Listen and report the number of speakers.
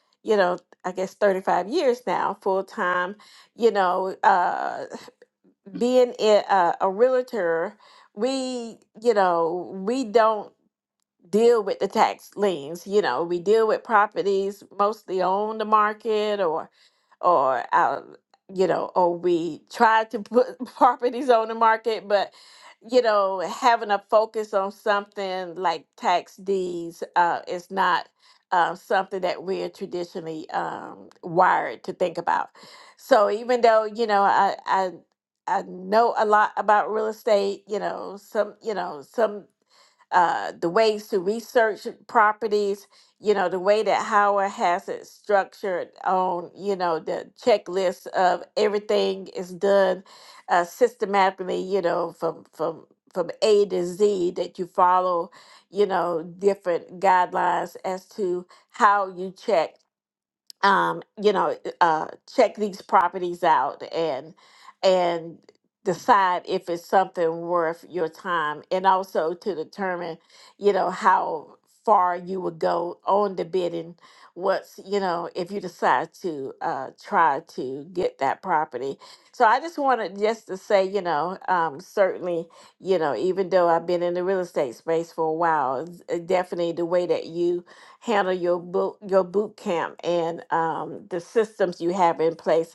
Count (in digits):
1